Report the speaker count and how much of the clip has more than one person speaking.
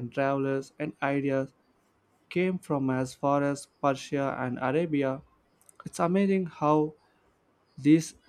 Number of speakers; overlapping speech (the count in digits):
1, no overlap